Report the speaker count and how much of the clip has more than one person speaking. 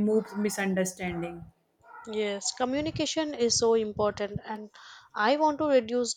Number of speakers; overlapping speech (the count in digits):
2, no overlap